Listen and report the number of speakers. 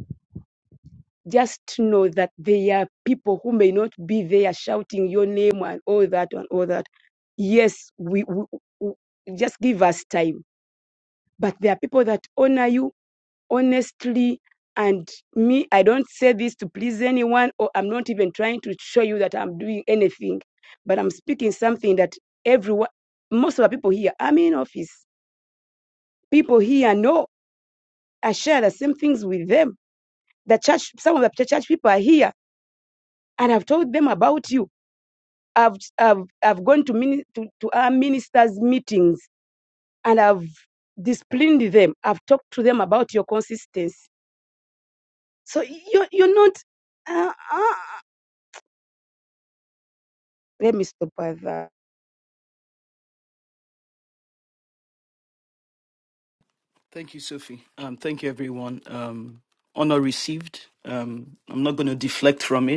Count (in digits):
2